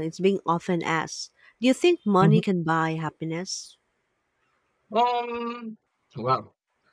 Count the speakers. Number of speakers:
2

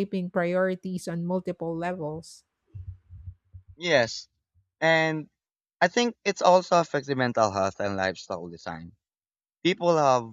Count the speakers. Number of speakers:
2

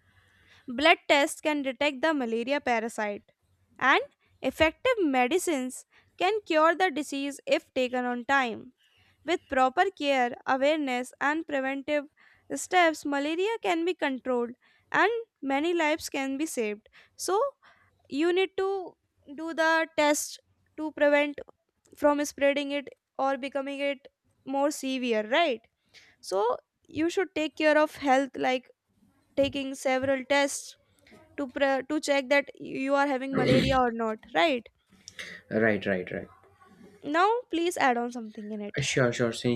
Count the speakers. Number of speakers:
2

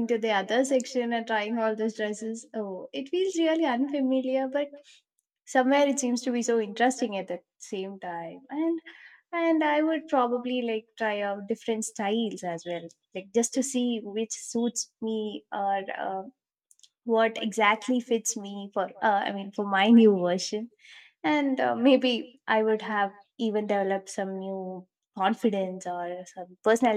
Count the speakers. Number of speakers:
1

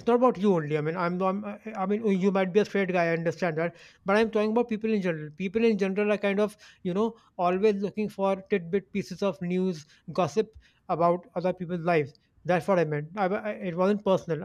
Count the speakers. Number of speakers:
1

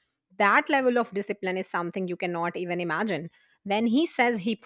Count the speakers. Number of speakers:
1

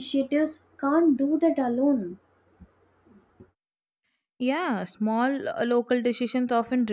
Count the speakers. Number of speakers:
2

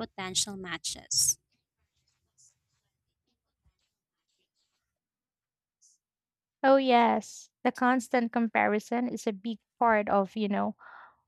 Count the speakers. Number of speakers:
2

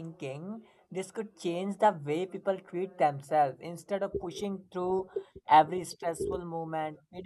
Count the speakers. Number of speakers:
1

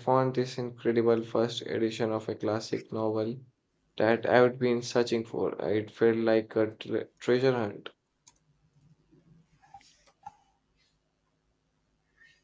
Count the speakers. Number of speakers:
1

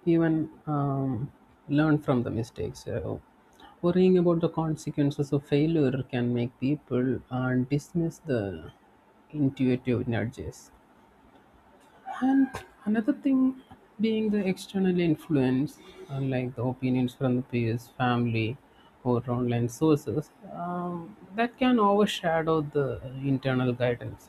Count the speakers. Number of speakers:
1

